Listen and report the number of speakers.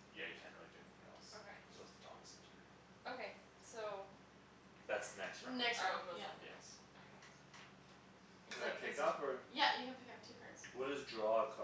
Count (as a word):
four